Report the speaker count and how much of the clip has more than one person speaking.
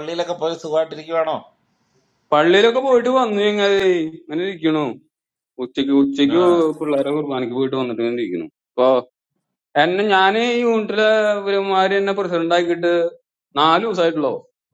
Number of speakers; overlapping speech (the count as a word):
two, about 1%